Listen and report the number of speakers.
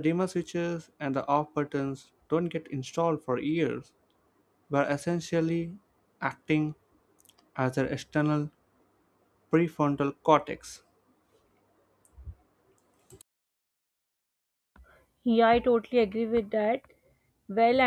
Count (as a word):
two